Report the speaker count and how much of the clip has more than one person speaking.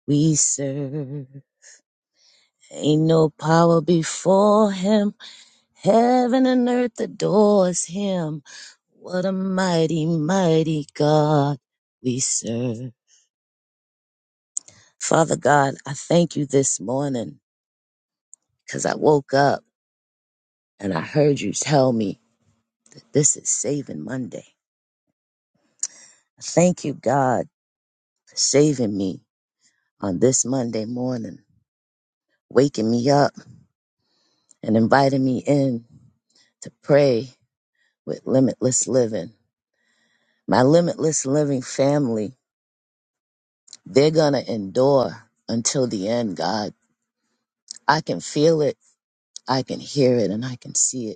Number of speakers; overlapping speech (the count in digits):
1, no overlap